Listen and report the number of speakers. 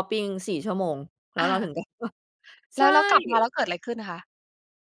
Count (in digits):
2